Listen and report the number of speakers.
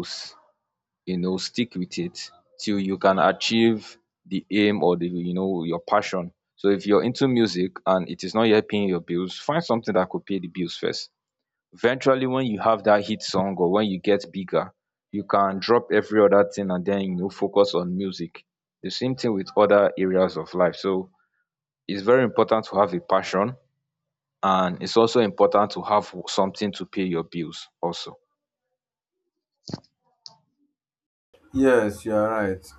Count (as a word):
two